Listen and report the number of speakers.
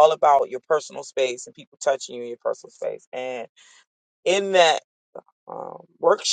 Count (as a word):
one